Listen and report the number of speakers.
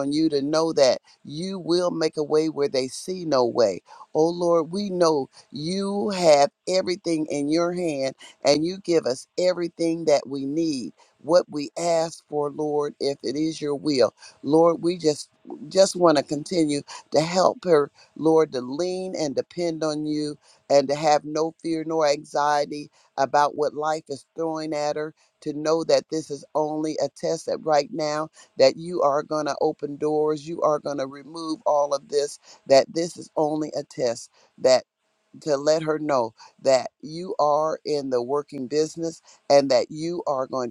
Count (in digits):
1